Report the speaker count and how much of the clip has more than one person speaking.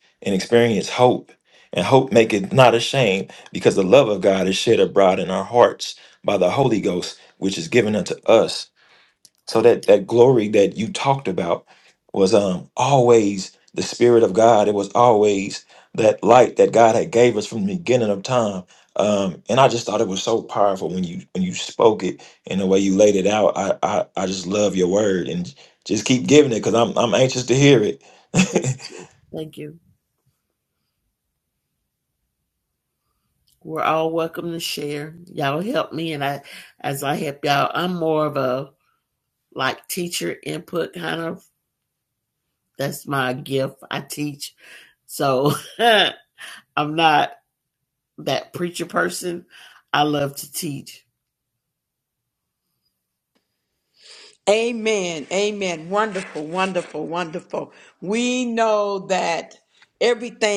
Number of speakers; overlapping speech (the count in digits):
3, no overlap